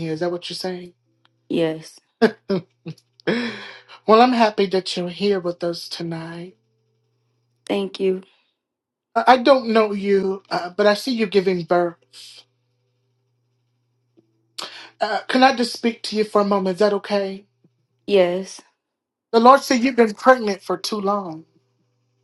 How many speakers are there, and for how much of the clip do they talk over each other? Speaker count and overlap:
two, no overlap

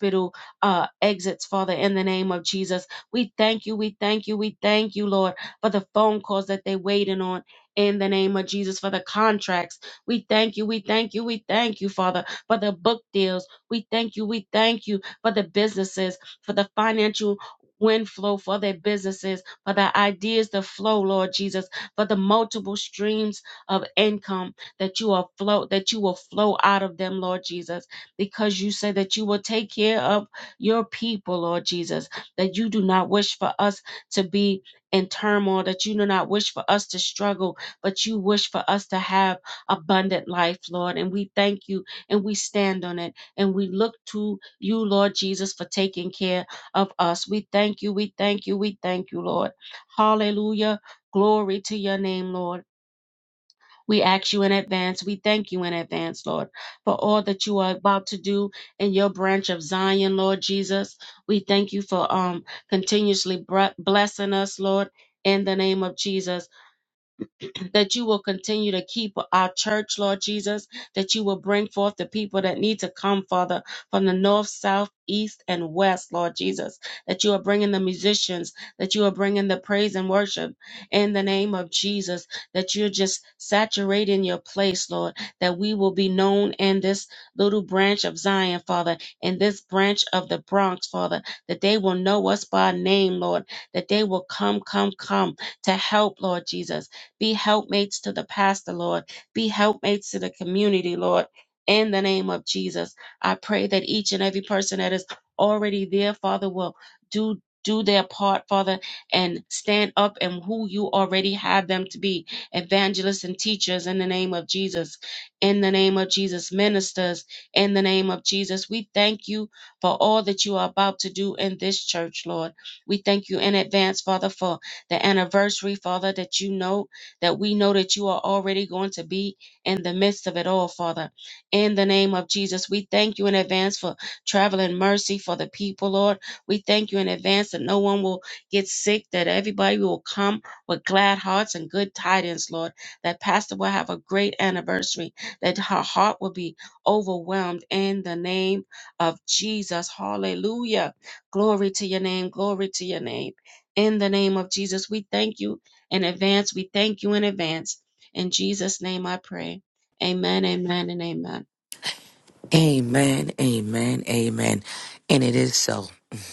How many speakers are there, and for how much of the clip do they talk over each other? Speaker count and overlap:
two, no overlap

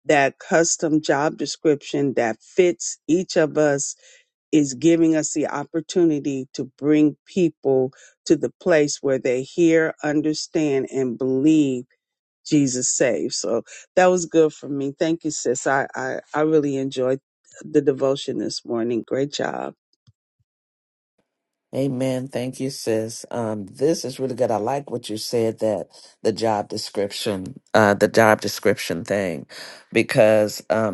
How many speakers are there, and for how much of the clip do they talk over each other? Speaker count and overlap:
two, no overlap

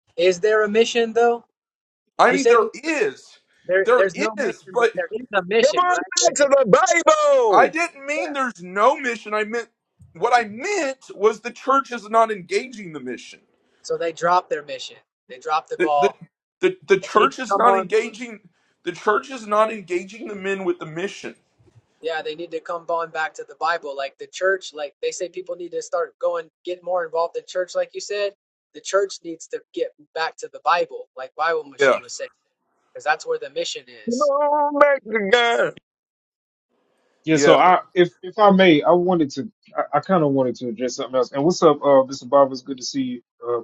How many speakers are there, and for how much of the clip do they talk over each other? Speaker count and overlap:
four, about 10%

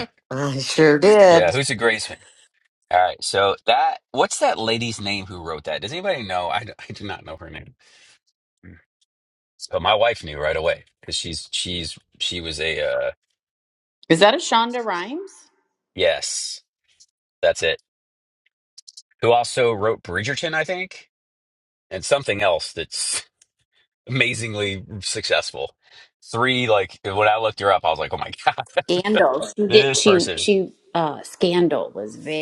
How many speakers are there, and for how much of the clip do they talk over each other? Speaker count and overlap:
three, about 4%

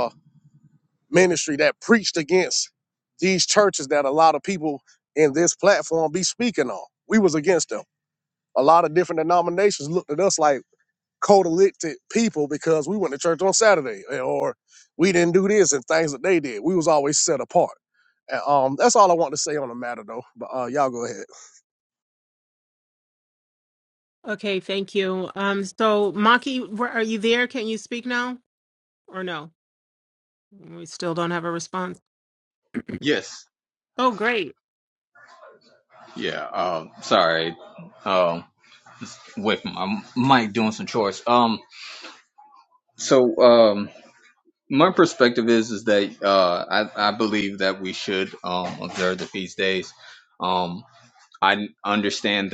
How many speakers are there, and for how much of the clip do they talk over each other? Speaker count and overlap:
three, no overlap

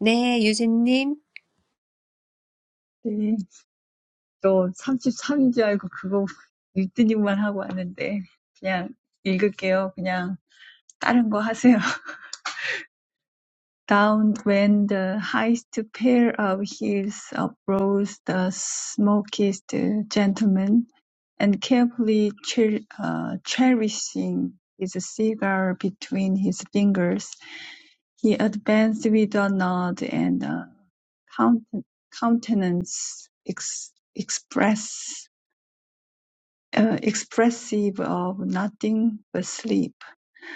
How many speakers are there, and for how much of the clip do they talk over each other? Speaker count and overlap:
two, no overlap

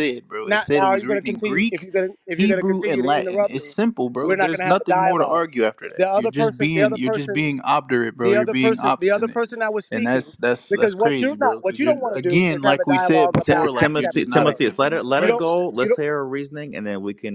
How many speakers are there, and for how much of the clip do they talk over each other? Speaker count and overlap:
three, about 69%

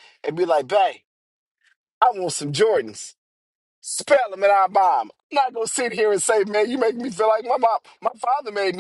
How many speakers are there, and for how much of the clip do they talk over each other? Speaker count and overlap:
one, no overlap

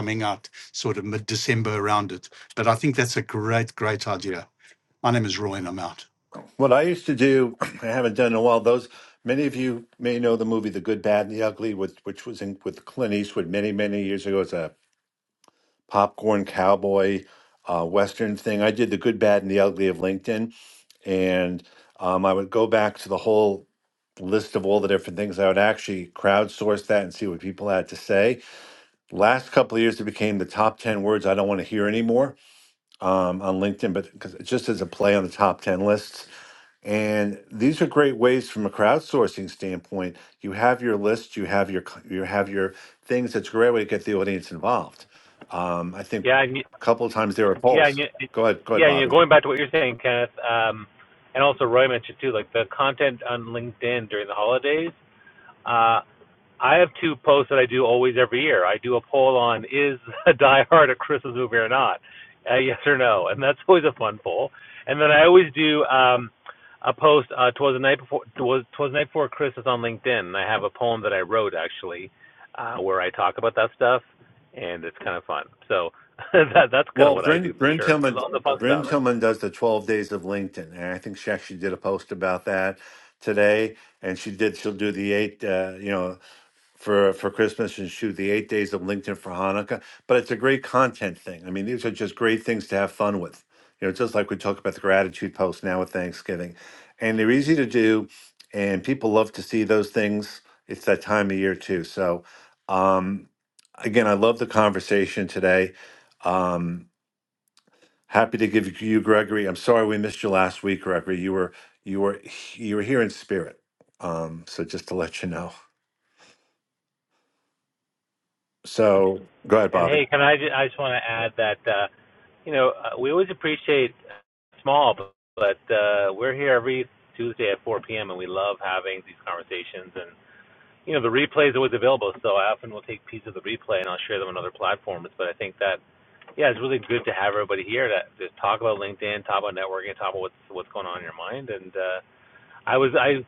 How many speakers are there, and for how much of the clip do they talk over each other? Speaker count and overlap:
three, about 2%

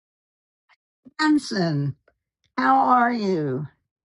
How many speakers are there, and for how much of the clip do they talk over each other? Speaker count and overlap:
one, no overlap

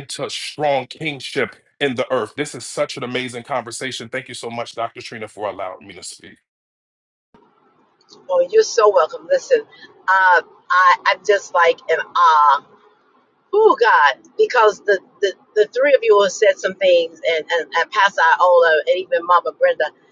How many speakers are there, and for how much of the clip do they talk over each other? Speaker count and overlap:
two, no overlap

